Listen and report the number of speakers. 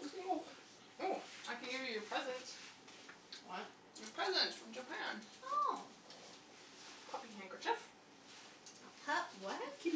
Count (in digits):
2